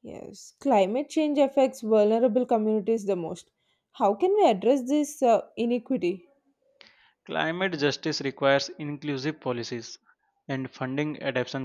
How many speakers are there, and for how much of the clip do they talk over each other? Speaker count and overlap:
2, no overlap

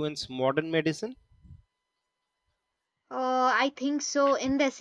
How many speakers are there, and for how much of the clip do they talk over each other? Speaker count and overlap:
2, no overlap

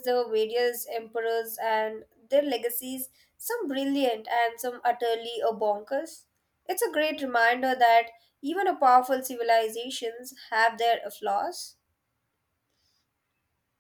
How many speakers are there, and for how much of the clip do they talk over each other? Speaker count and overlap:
1, no overlap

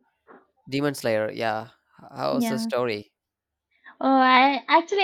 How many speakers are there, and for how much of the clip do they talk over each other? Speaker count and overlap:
2, about 8%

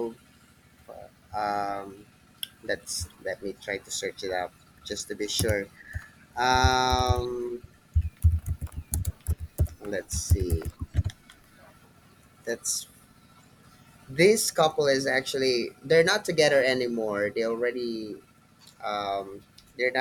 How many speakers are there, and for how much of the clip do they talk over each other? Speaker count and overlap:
1, no overlap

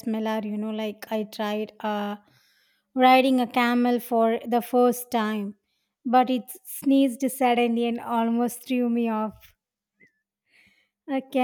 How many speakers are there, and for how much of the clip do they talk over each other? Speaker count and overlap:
1, no overlap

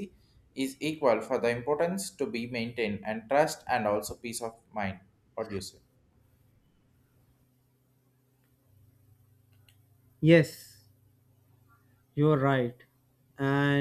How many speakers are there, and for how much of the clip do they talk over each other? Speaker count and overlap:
2, no overlap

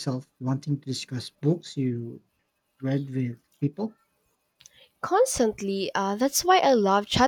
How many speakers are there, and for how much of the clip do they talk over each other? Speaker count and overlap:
2, no overlap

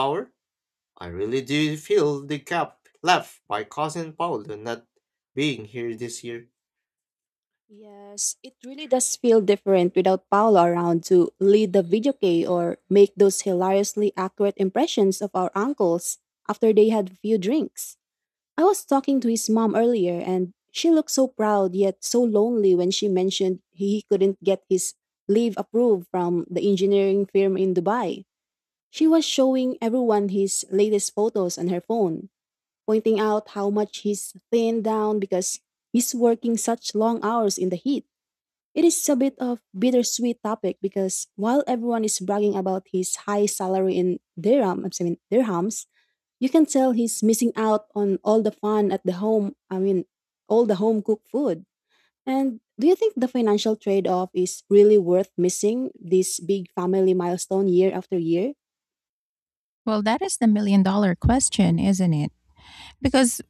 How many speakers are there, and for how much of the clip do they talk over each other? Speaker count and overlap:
3, no overlap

